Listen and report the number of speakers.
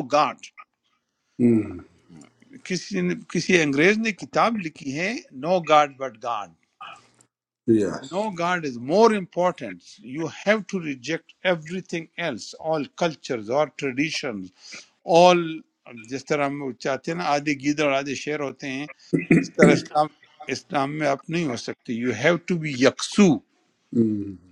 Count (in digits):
2